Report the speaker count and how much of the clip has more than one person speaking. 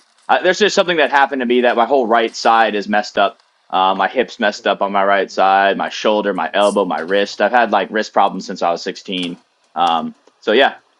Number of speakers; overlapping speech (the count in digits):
1, no overlap